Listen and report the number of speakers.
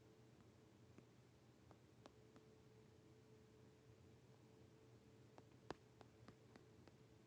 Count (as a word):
zero